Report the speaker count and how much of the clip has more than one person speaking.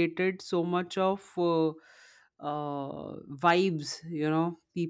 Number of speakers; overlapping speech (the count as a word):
one, no overlap